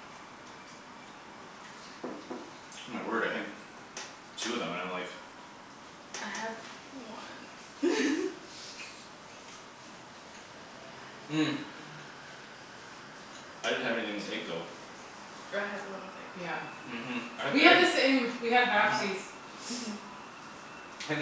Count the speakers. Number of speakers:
three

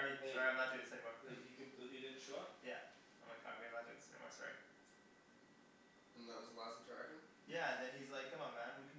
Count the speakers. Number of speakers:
three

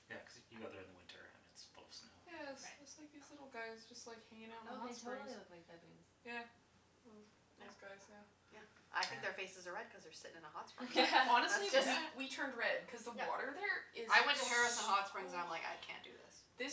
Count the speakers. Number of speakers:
four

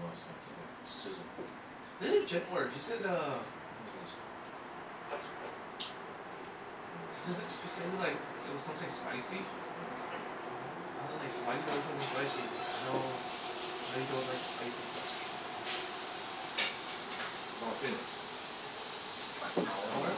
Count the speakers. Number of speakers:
two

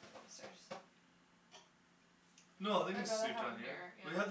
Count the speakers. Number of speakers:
two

